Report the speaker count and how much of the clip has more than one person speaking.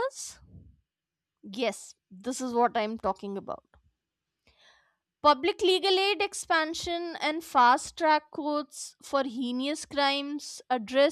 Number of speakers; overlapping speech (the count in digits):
1, no overlap